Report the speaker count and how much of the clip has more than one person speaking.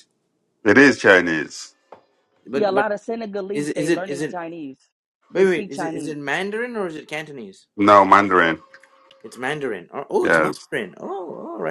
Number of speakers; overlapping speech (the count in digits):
3, about 19%